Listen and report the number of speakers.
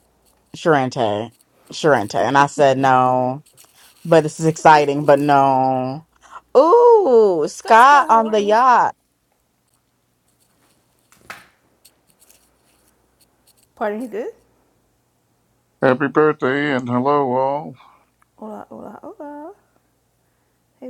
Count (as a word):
three